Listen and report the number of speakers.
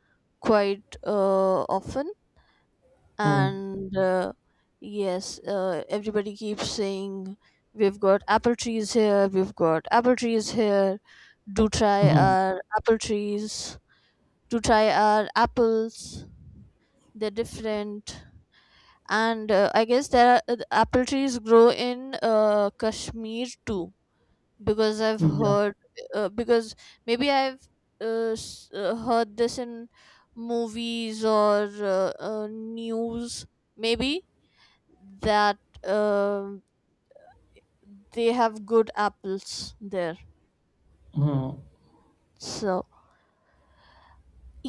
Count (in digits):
2